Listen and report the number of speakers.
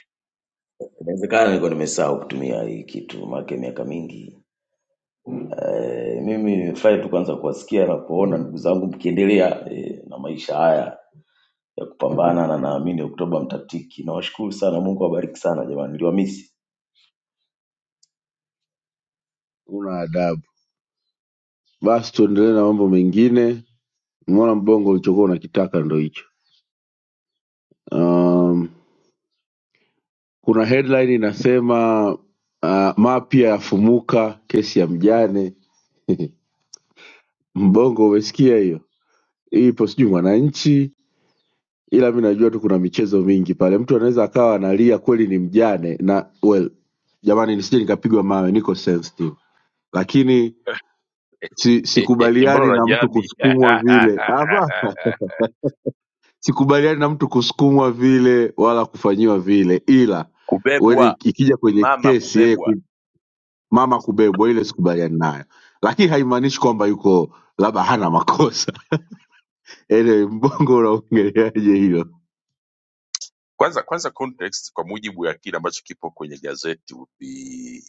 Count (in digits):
3